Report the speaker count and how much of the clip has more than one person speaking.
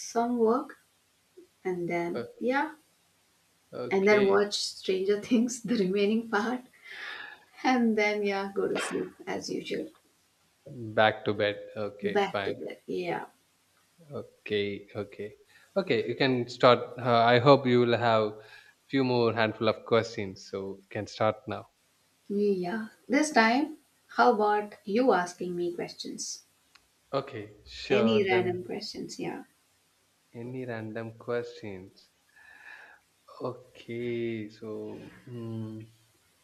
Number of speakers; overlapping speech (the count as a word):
two, about 5%